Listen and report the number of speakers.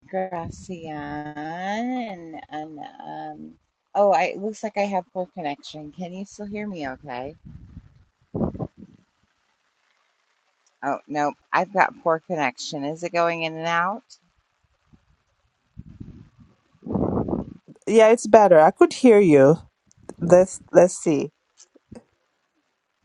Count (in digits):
2